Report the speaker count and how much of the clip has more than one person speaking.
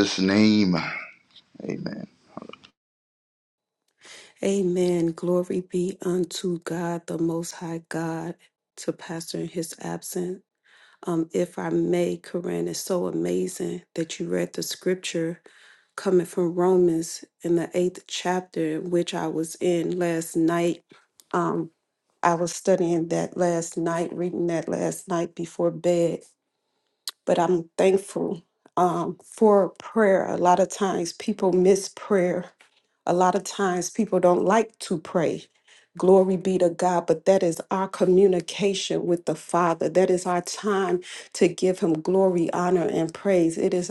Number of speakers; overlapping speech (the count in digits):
2, no overlap